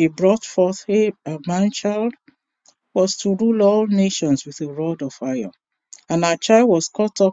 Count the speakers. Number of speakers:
one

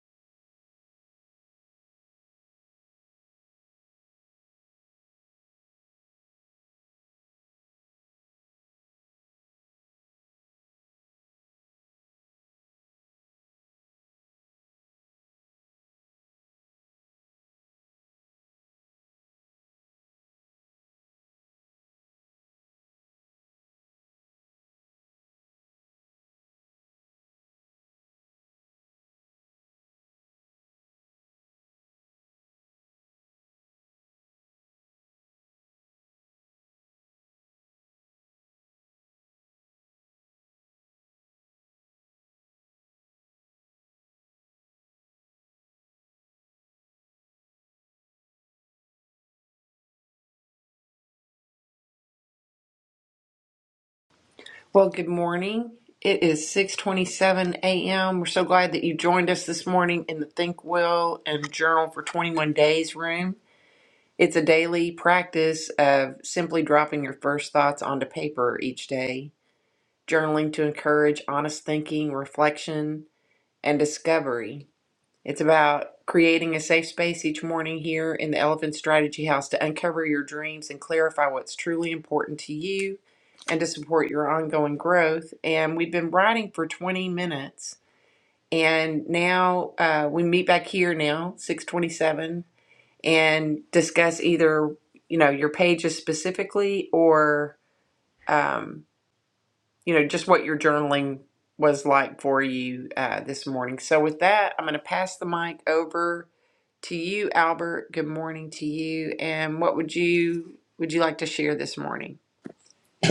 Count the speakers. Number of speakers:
one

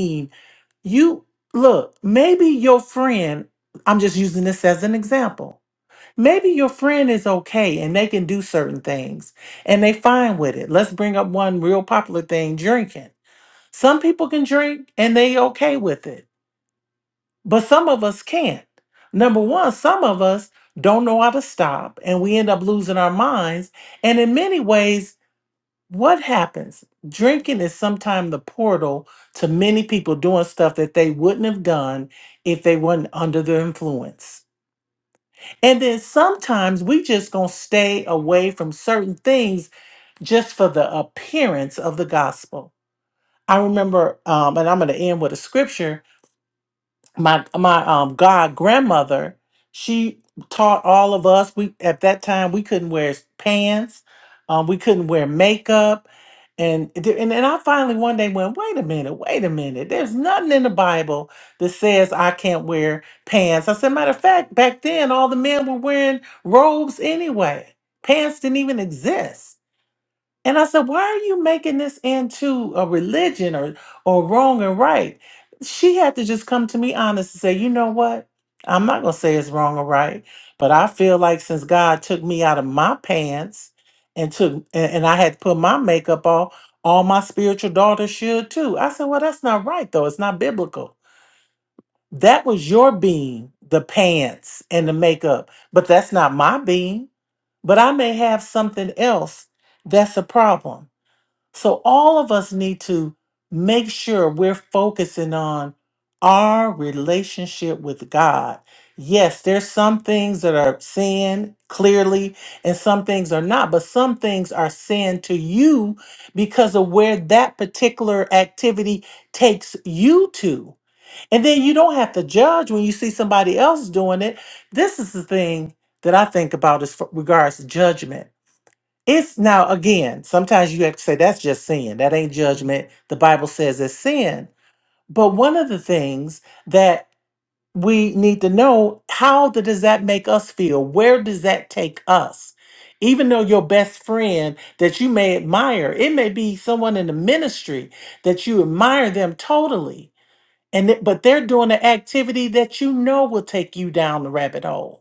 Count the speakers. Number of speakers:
one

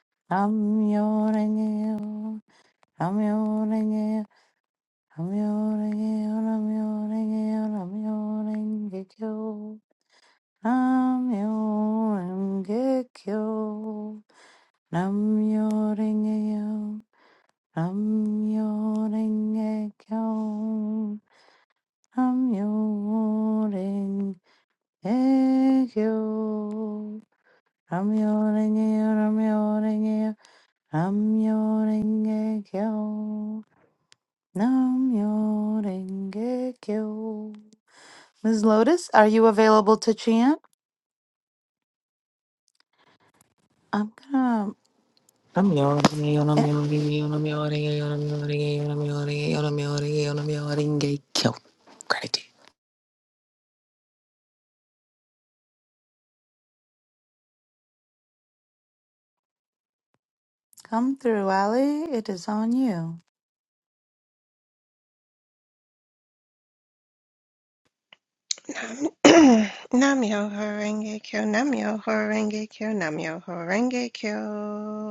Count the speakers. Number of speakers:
three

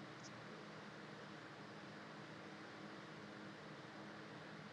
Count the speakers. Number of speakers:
zero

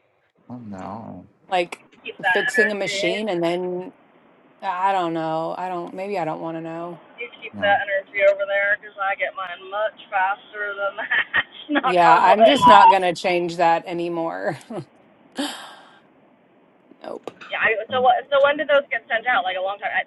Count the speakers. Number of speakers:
three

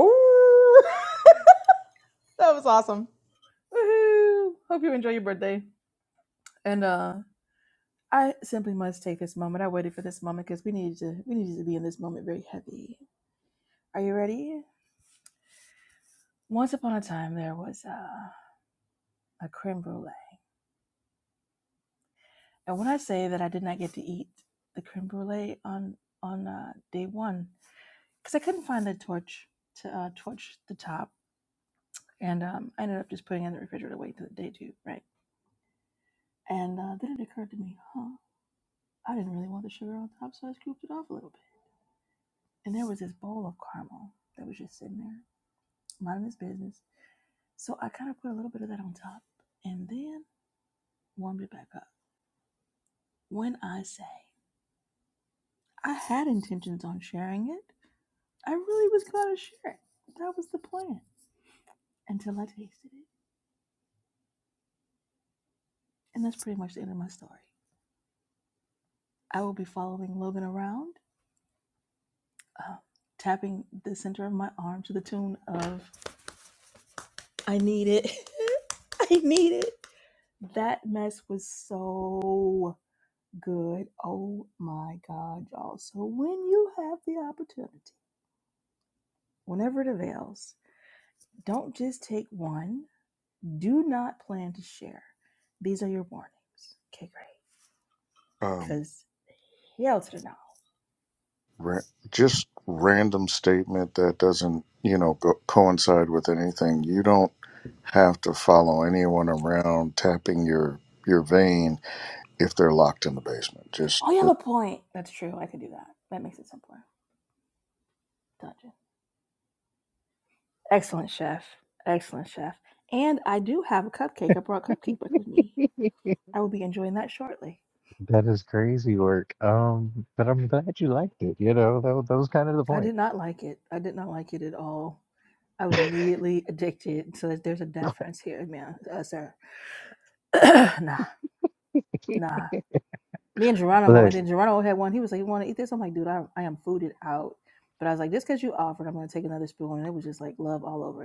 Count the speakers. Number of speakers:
four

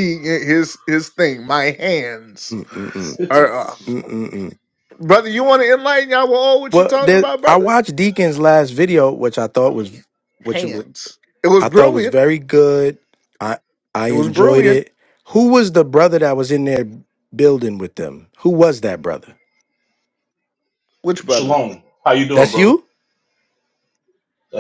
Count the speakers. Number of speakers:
three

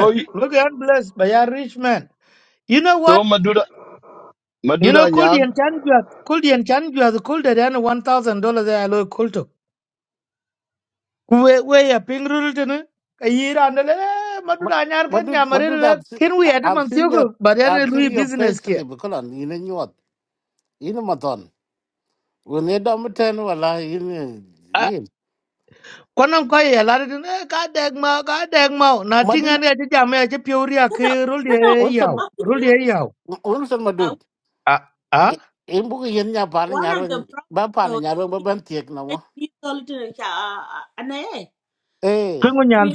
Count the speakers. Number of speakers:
four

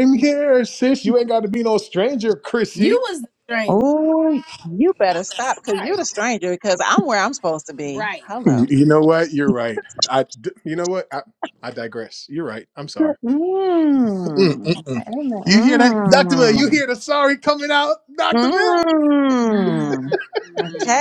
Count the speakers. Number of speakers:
three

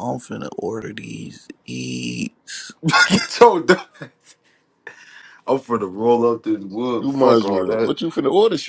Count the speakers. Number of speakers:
three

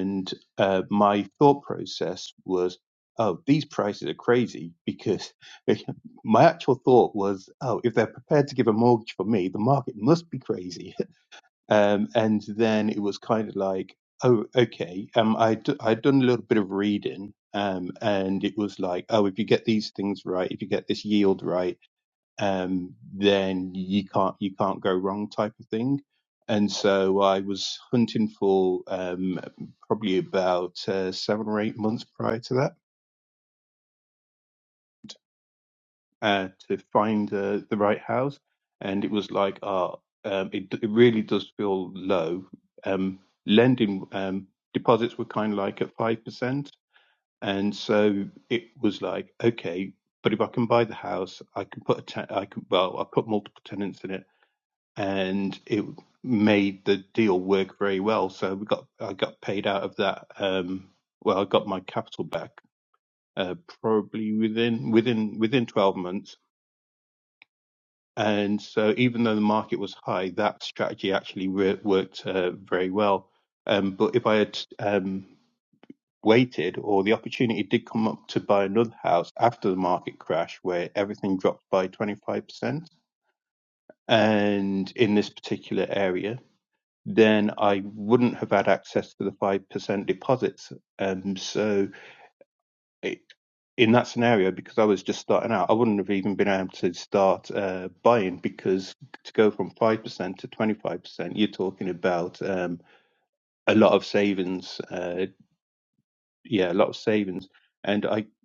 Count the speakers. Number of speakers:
one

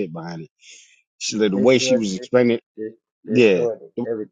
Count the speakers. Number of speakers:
two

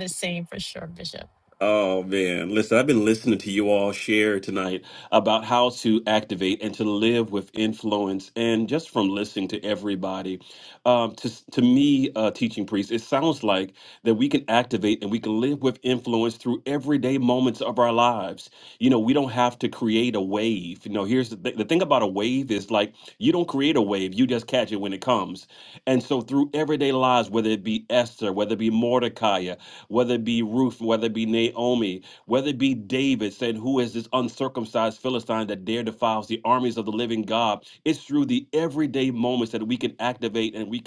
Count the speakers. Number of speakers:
two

